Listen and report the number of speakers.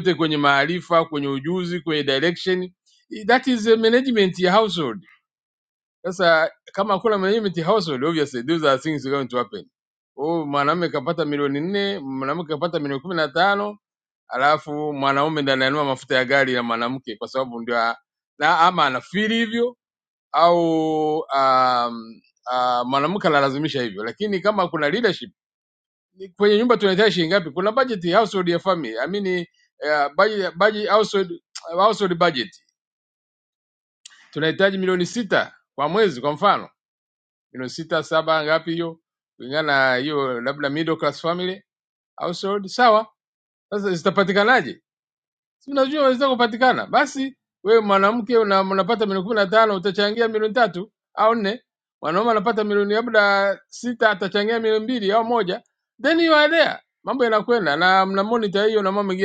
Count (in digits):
1